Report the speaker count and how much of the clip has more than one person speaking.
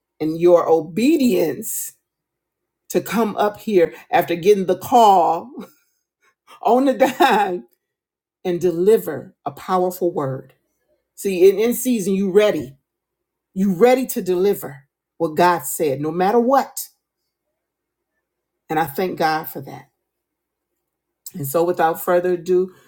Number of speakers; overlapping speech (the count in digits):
1, no overlap